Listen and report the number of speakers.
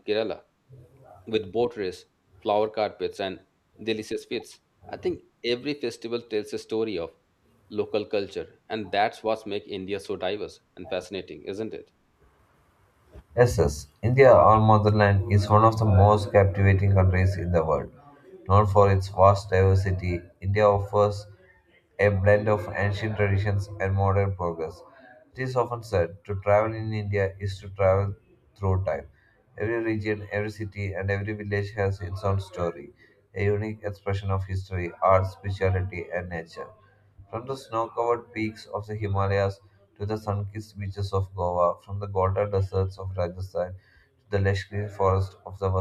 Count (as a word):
two